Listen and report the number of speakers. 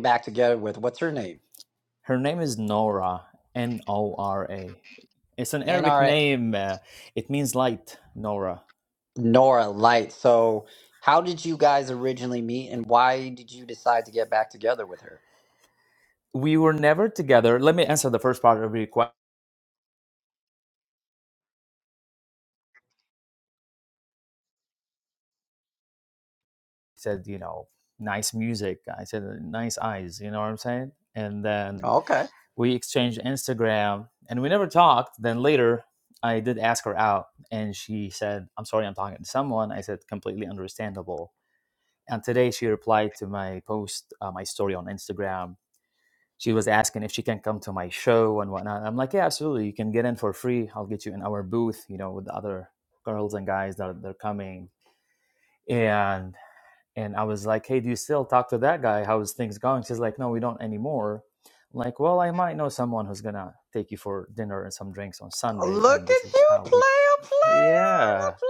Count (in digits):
2